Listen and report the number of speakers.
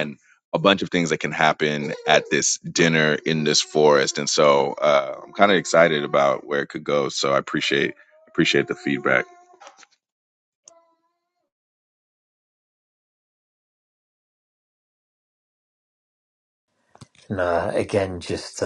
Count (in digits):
2